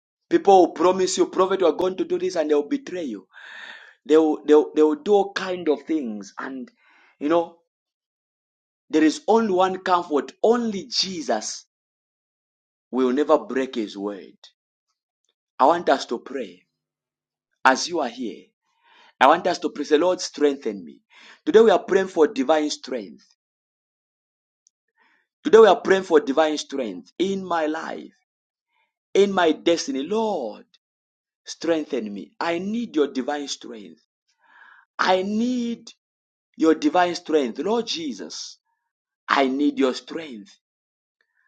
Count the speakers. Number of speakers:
1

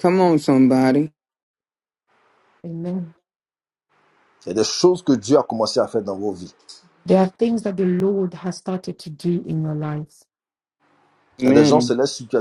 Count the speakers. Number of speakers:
3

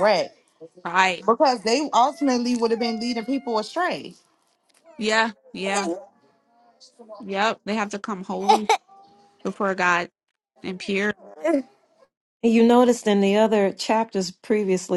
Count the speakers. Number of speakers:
3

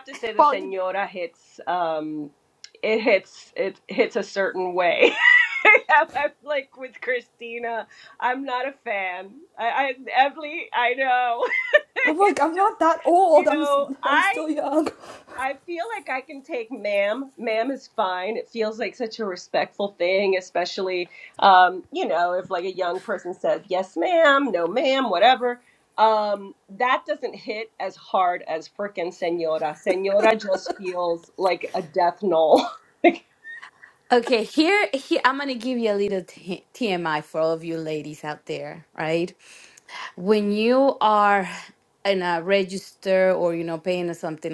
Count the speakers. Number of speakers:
3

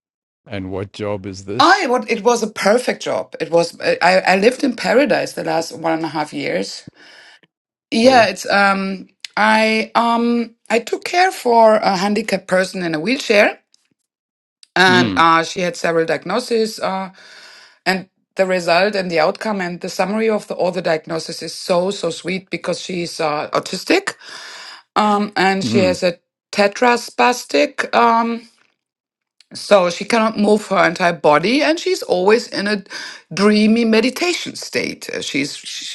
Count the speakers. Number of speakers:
2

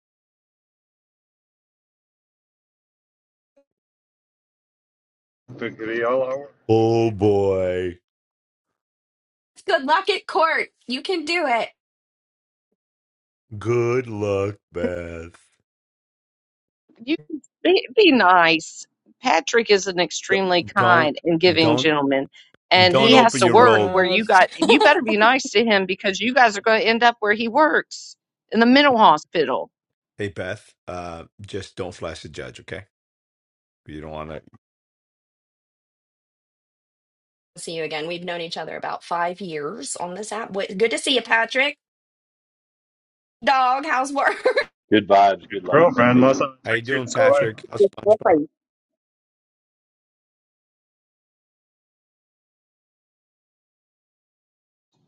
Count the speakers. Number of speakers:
5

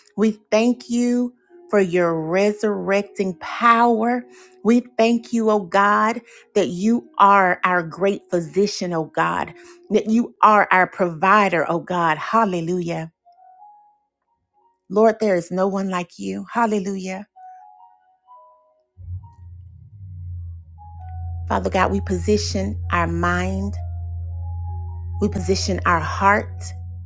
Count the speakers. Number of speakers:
1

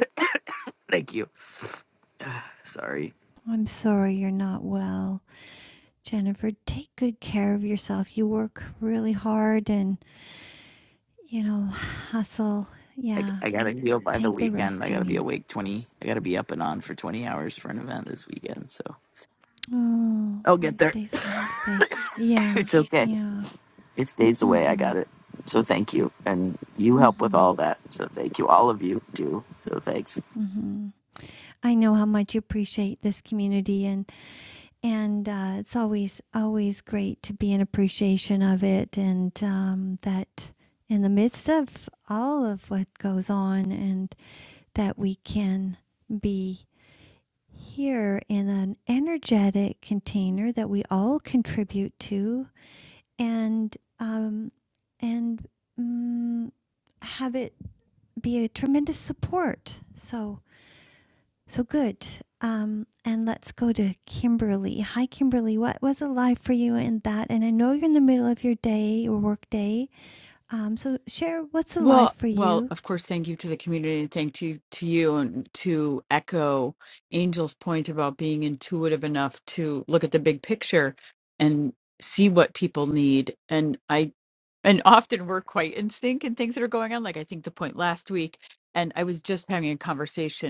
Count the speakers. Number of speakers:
3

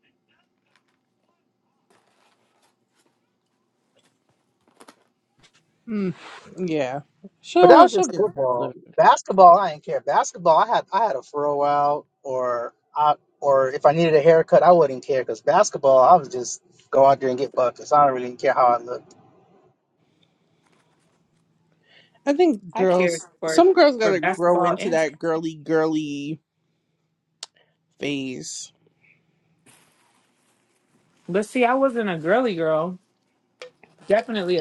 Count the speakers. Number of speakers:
3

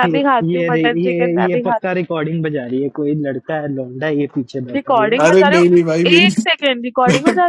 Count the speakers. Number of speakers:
3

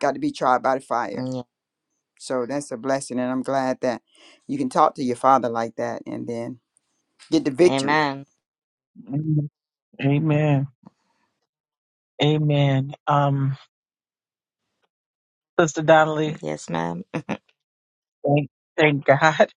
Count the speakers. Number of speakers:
3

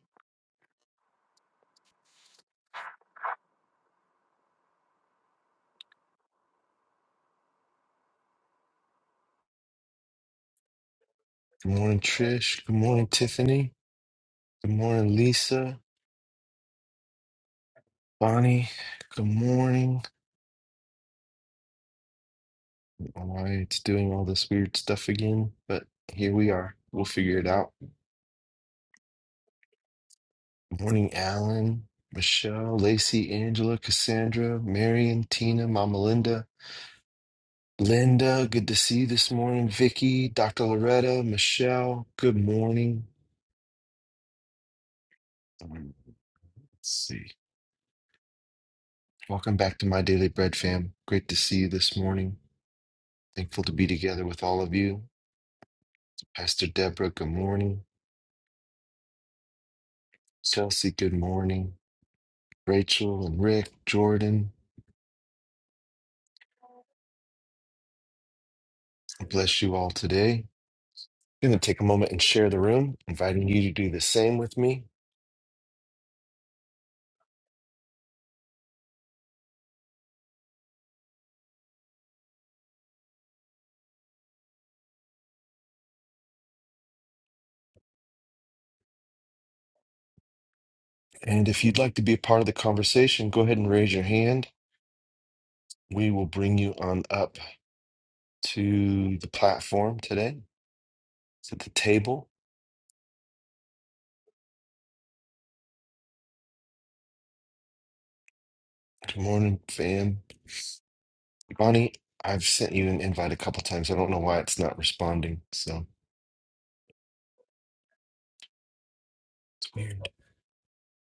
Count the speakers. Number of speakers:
1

